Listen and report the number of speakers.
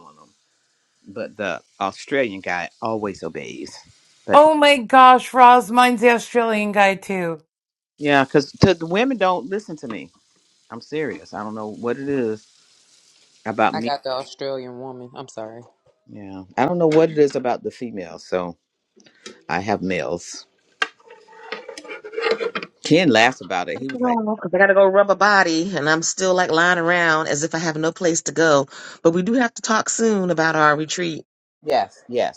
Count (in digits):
4